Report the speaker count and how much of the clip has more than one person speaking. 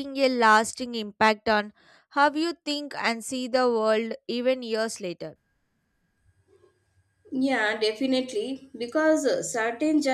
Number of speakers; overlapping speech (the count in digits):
2, no overlap